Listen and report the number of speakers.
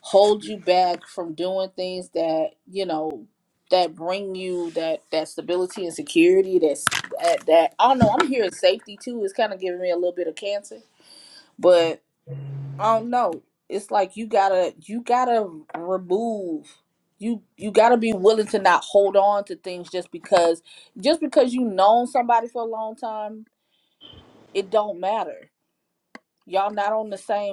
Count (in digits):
1